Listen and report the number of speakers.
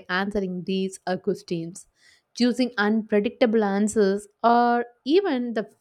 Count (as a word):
one